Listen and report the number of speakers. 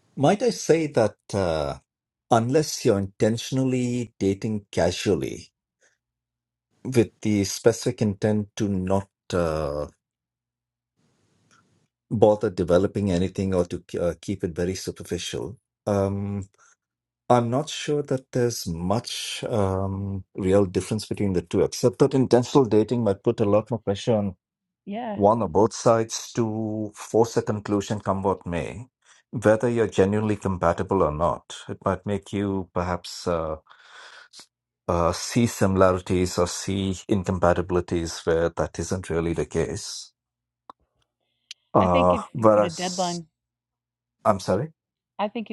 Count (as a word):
two